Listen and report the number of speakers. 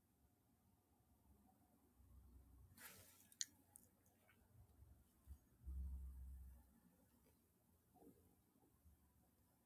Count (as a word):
zero